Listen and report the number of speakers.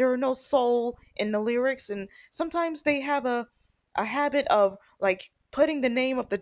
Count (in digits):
1